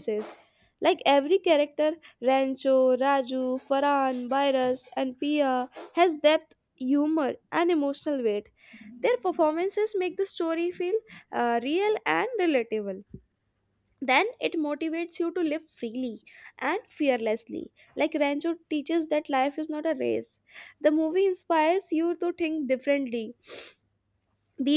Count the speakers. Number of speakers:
one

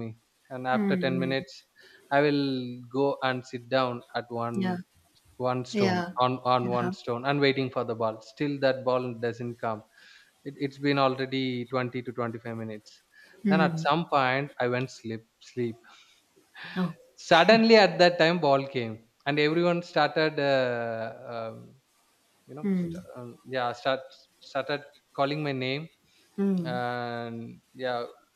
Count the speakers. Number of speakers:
two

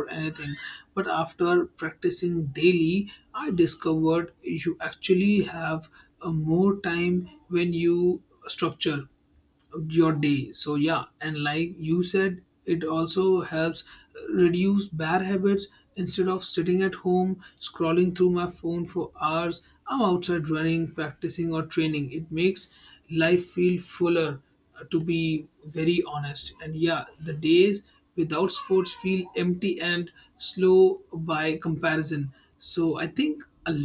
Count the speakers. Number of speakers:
one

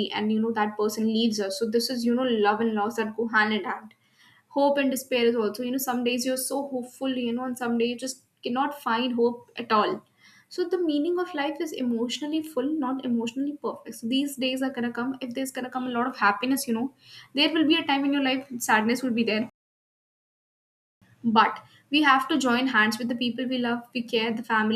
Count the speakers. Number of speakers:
one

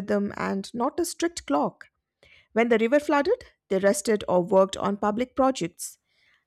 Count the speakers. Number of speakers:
one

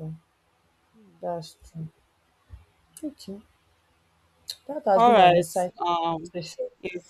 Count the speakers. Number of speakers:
two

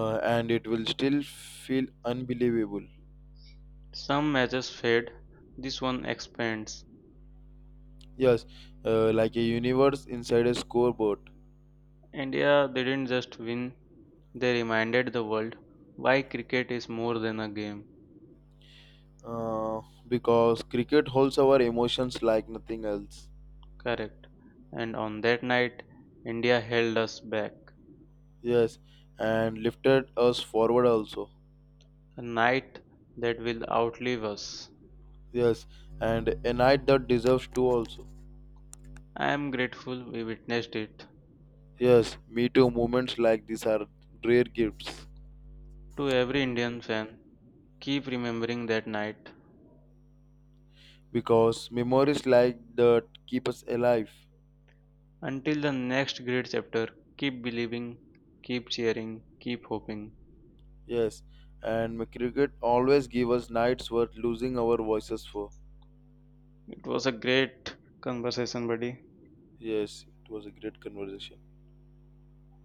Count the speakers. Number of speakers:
two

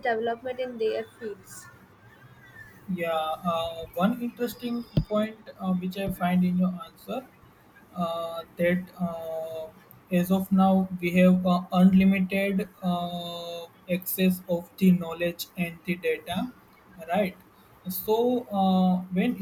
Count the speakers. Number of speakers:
two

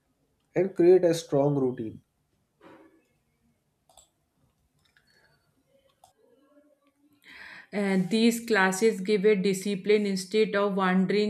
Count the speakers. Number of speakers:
two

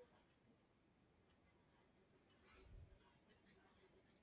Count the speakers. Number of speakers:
zero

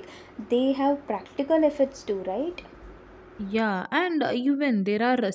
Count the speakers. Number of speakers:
two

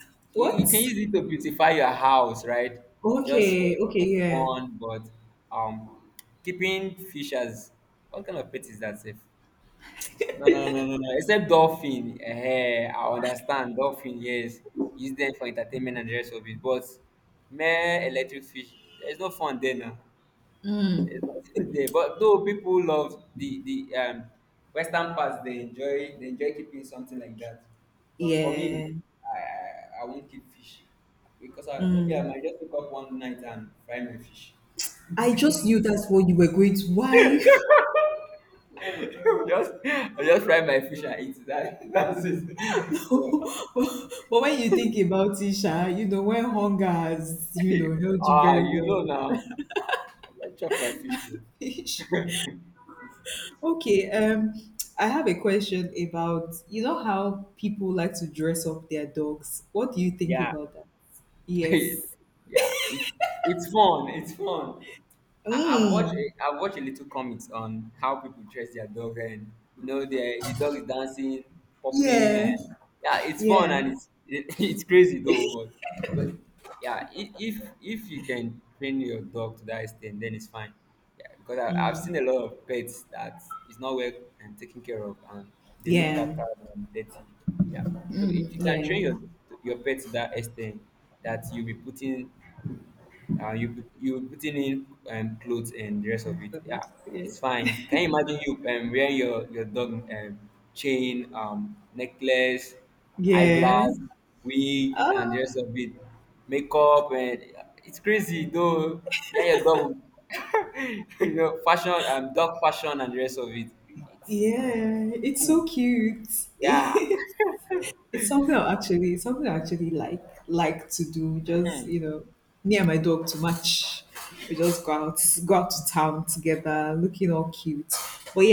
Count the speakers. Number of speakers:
two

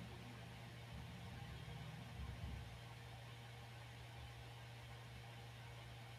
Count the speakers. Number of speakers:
zero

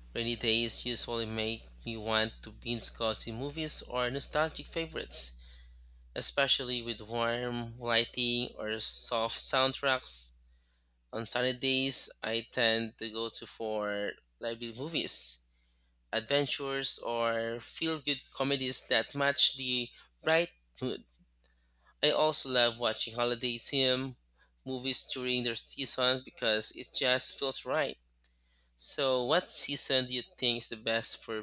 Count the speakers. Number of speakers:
one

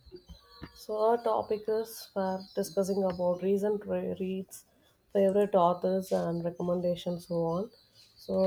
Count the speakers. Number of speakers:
one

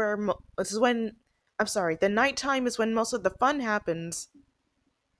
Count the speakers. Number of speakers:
one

